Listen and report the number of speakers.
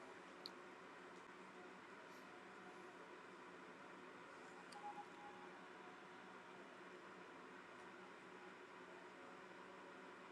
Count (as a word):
zero